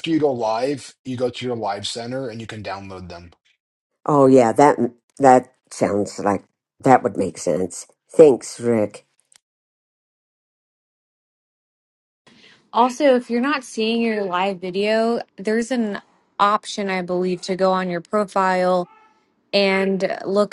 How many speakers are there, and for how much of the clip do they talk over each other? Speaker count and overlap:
3, no overlap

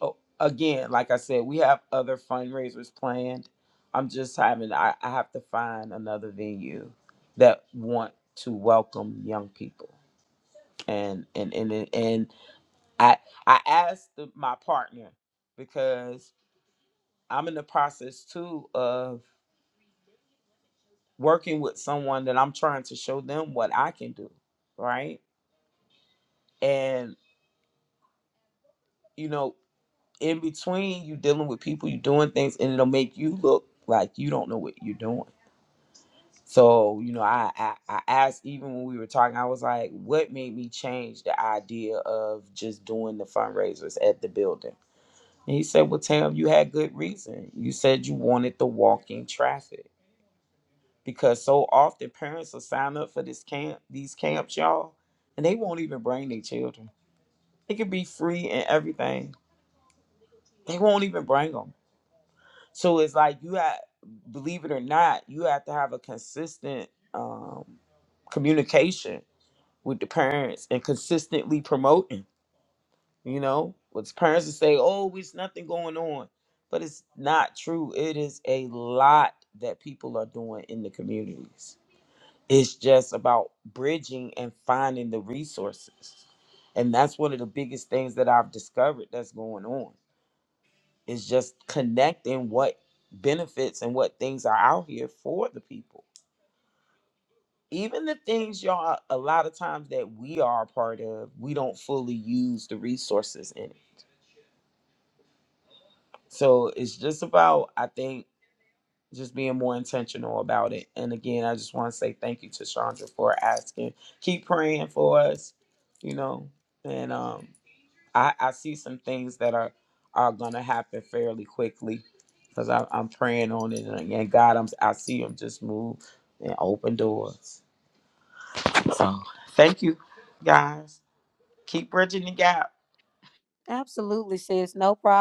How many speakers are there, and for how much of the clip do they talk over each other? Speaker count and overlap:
2, no overlap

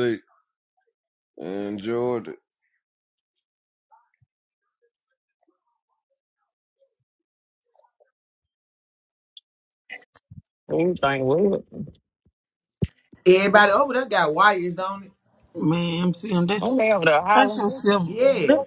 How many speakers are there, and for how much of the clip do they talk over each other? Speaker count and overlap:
4, about 3%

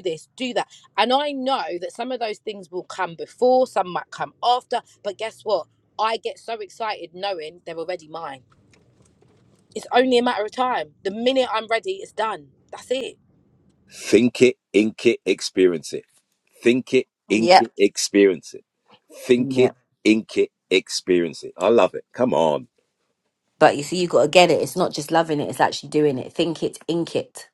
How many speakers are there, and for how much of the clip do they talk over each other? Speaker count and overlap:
3, about 2%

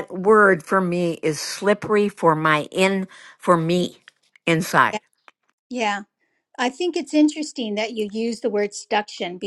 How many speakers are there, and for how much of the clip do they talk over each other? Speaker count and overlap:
2, under 1%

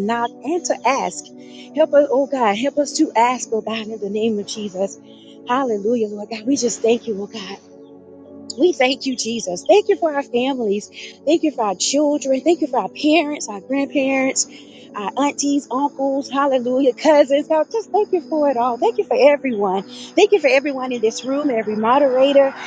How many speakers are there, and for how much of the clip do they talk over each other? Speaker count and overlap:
1, no overlap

